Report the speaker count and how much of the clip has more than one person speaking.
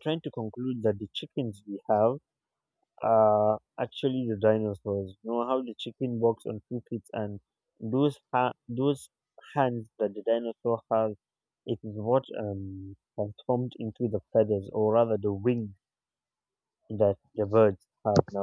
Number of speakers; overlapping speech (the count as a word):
one, no overlap